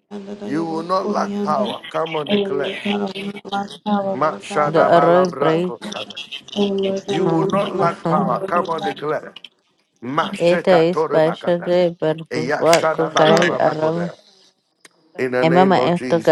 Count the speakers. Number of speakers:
three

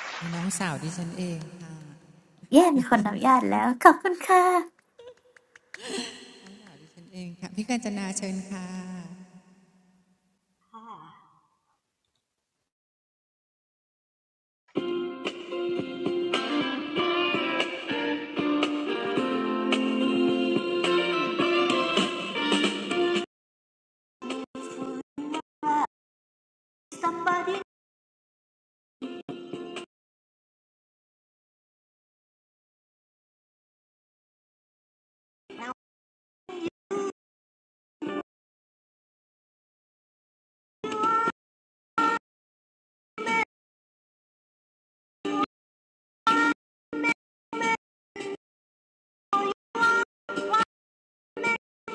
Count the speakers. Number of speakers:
three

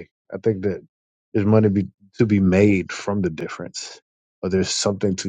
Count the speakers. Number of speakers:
one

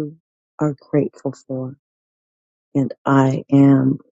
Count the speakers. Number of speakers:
one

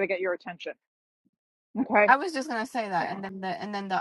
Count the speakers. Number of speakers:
two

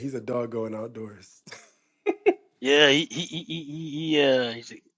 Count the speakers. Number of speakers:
two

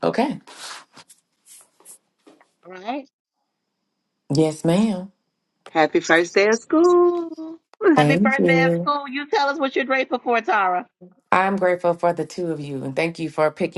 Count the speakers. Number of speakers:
three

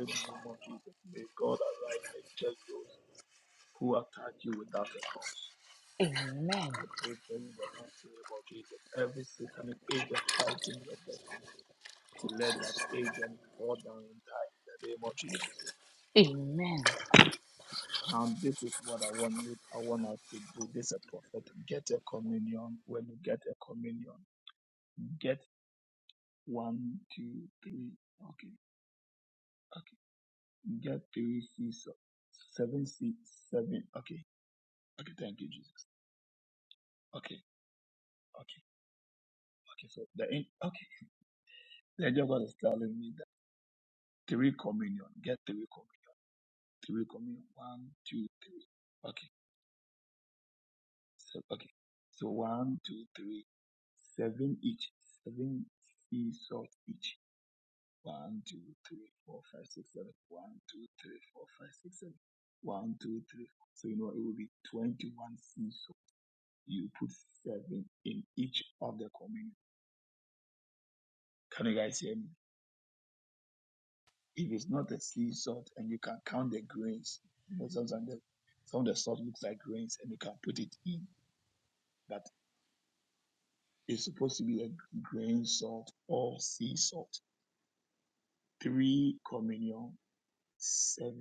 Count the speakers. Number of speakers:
two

